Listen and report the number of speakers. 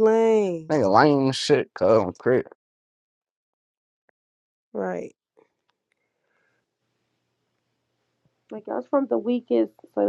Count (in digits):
3